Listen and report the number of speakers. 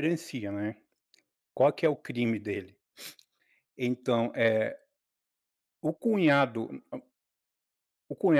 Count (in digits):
1